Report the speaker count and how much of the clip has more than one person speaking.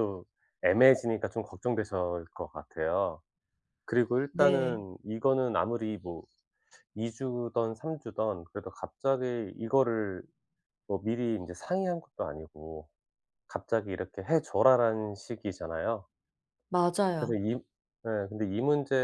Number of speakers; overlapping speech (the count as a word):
two, about 3%